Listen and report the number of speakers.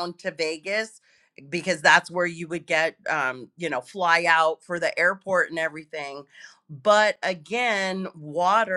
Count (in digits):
1